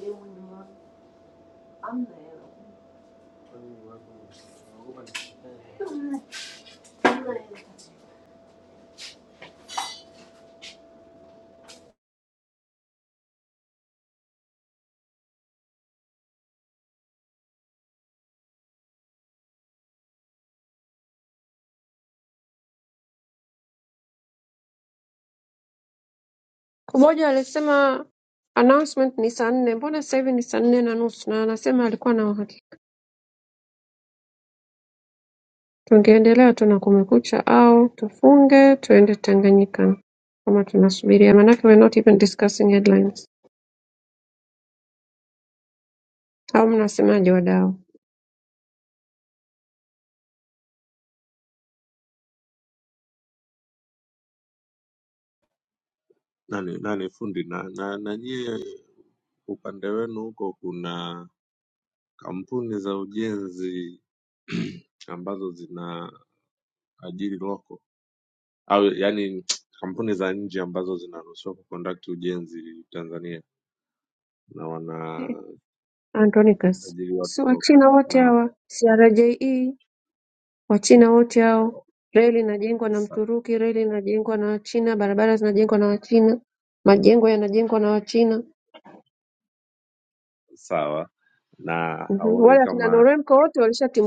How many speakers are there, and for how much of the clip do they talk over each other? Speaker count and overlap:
three, about 2%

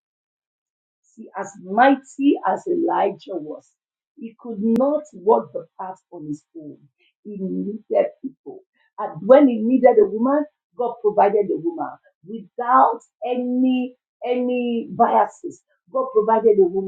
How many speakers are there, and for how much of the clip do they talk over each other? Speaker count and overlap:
one, no overlap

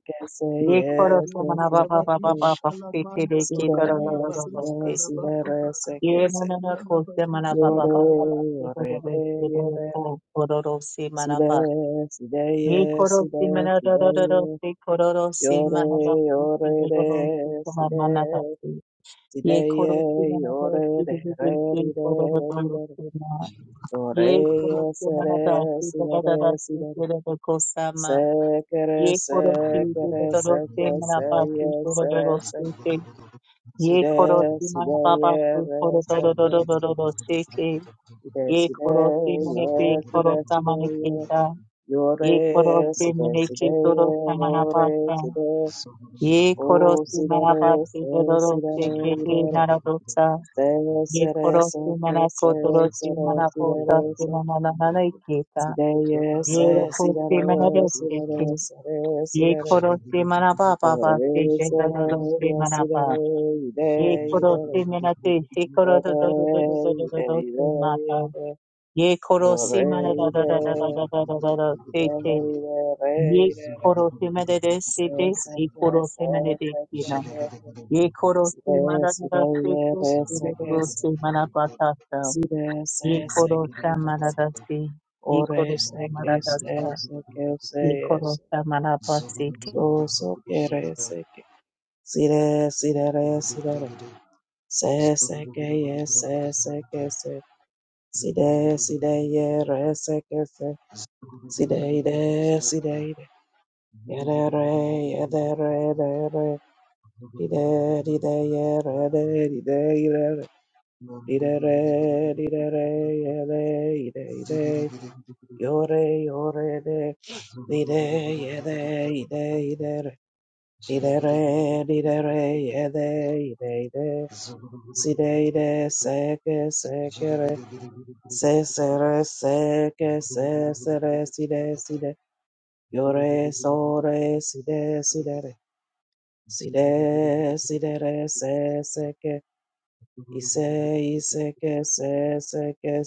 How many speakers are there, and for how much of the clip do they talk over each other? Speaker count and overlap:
two, about 34%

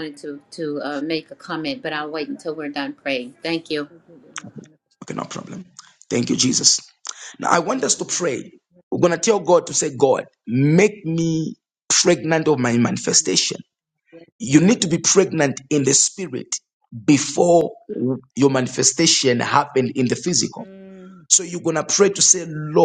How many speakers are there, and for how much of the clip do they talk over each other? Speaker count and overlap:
three, about 19%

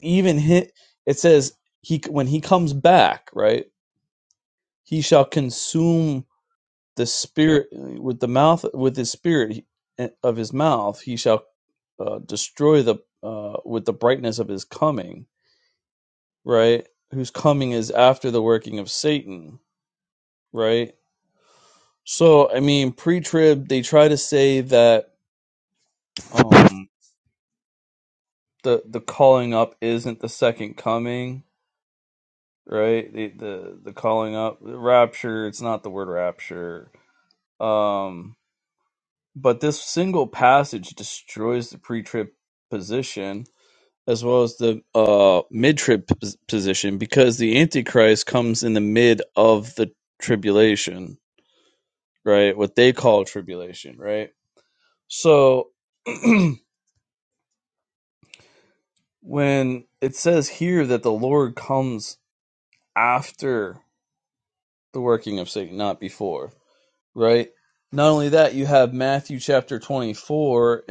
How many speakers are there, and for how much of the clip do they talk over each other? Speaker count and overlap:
one, no overlap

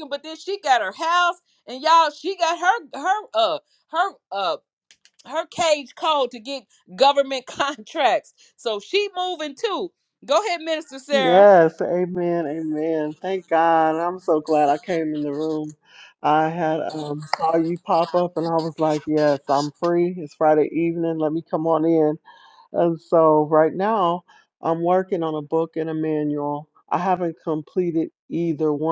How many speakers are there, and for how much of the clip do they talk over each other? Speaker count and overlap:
two, about 1%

